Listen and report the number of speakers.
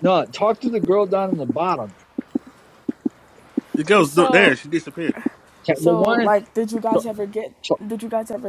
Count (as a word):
three